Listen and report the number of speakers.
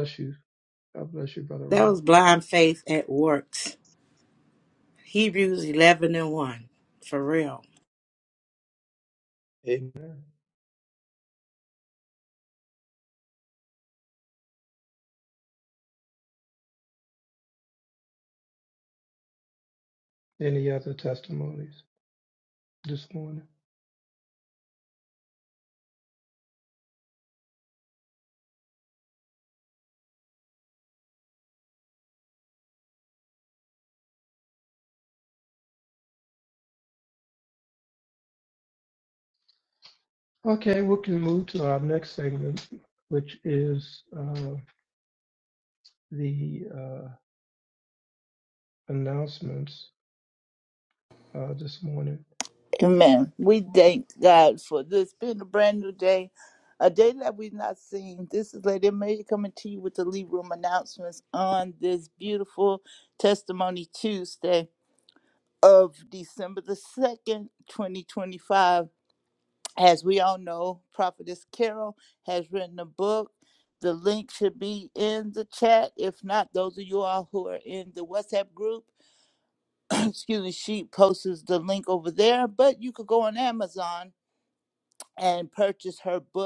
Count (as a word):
three